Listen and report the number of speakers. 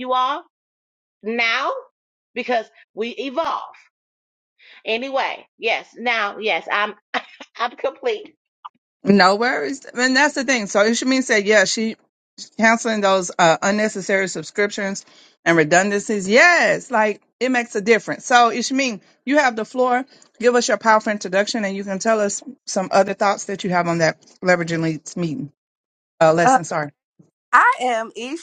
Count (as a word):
three